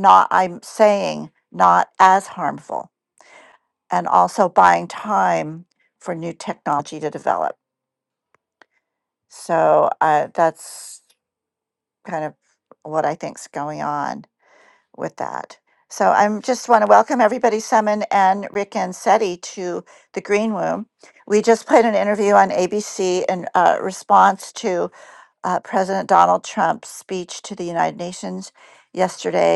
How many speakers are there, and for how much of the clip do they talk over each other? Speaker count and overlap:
1, no overlap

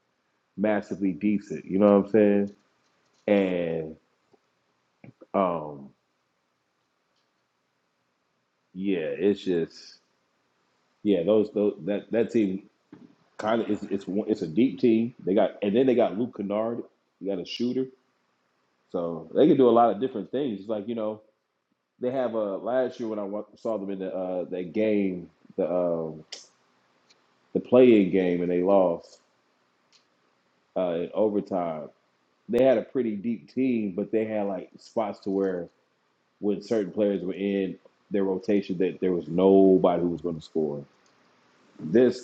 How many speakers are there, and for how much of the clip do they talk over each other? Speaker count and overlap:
1, no overlap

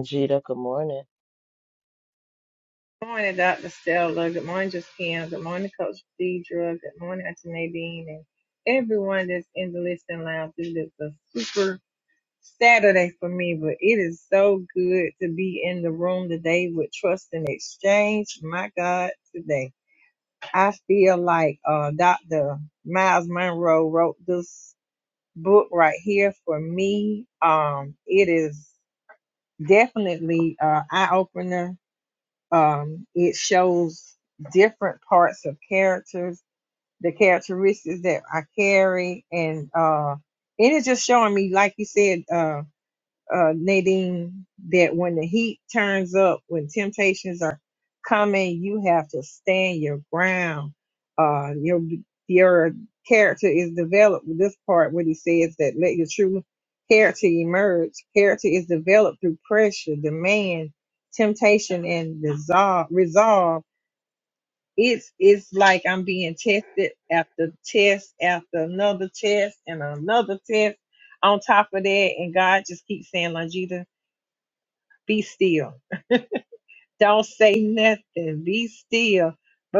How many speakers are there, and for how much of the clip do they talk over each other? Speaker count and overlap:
2, no overlap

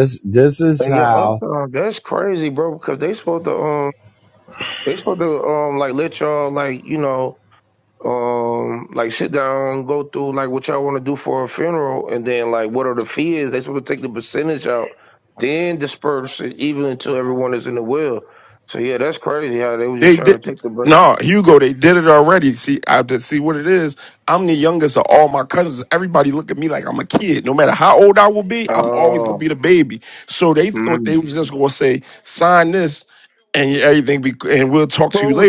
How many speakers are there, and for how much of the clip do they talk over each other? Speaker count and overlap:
3, about 7%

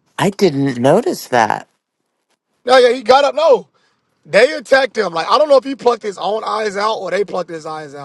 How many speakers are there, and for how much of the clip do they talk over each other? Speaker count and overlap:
2, no overlap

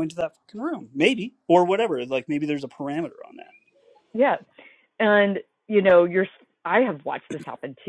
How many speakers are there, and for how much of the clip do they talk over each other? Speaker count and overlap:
2, no overlap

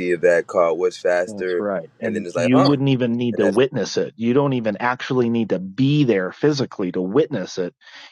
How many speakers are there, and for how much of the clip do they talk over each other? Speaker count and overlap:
2, about 17%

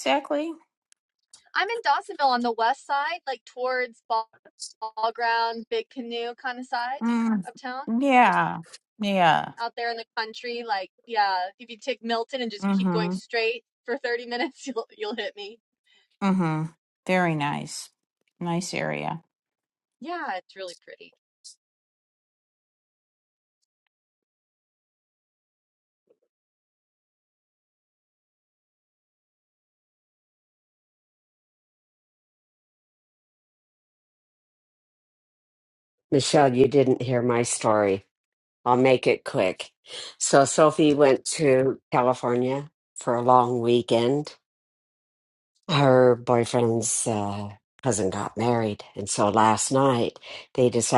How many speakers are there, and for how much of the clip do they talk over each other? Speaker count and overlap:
3, about 1%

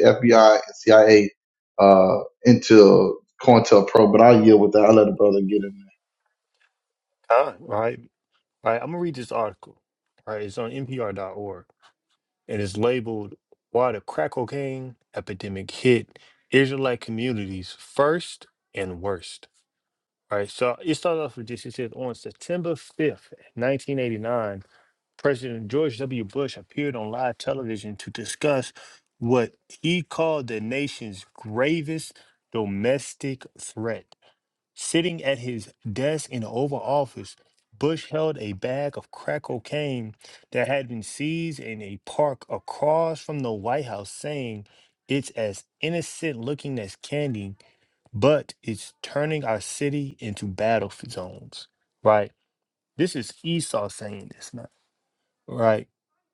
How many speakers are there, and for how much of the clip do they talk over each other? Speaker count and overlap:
2, no overlap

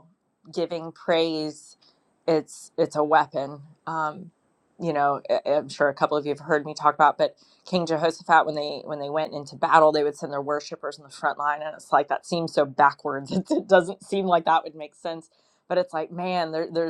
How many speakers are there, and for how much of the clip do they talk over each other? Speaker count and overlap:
1, no overlap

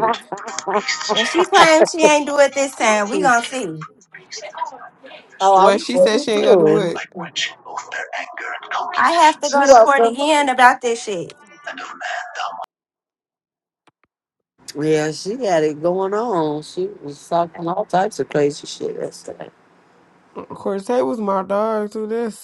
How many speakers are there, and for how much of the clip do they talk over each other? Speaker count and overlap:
4, about 21%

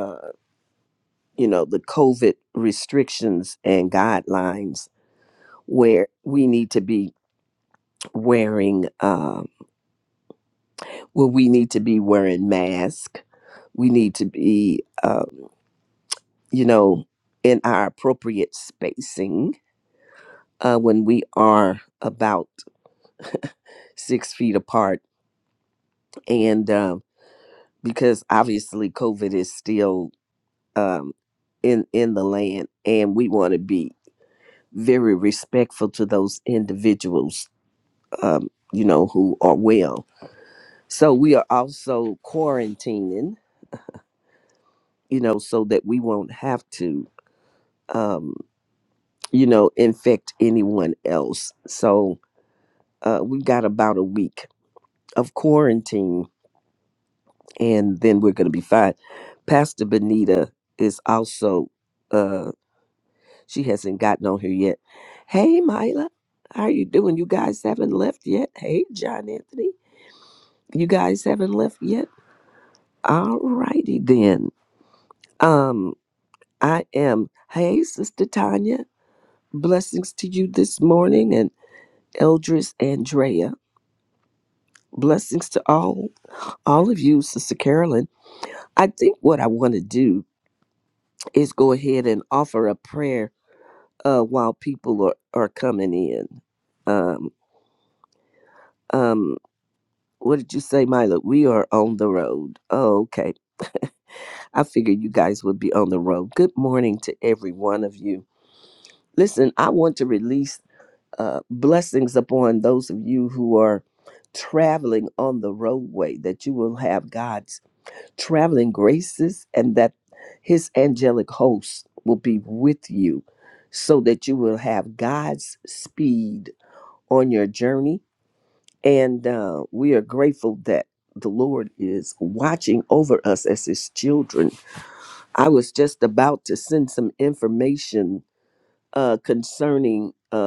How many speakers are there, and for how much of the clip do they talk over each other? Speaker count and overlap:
1, no overlap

